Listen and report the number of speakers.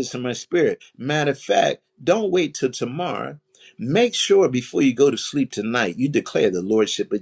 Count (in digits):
1